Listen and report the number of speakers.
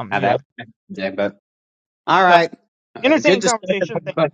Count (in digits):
2